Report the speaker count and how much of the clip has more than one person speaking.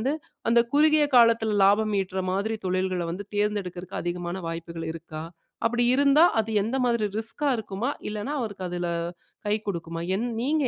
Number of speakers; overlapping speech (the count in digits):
1, no overlap